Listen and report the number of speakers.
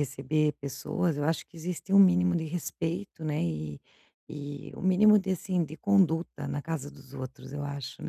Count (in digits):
1